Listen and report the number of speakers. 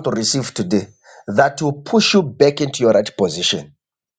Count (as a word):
one